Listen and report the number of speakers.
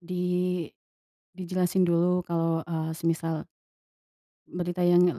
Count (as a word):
one